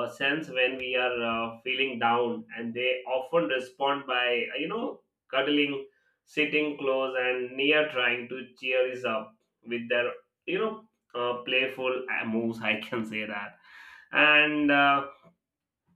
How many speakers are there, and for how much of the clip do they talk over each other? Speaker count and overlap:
1, no overlap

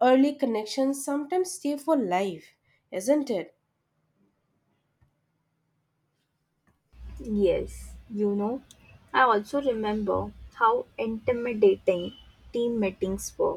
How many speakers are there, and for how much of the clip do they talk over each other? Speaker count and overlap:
2, no overlap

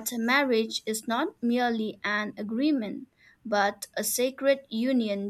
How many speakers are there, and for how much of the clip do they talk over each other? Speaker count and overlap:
1, no overlap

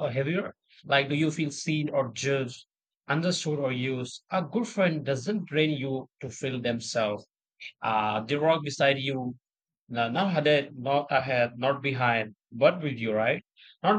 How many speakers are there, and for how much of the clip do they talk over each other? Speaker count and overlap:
1, no overlap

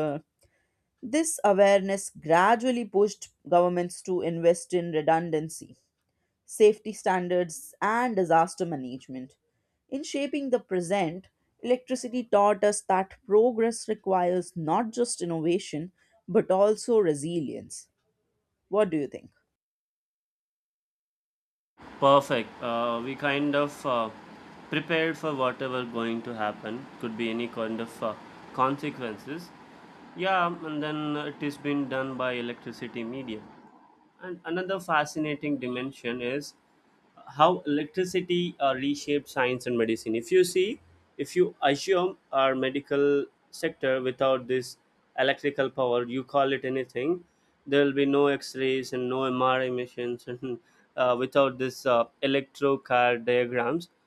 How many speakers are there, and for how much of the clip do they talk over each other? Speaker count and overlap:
2, no overlap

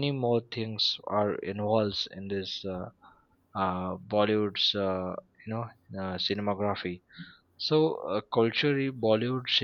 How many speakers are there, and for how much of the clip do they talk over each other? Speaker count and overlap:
1, no overlap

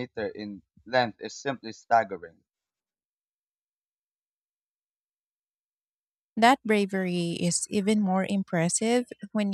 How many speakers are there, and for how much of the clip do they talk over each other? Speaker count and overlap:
2, no overlap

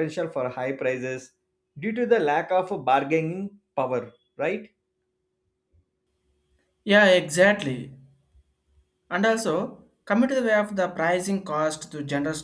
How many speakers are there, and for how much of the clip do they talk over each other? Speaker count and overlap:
2, no overlap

